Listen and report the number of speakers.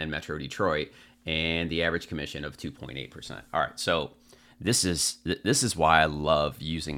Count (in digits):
1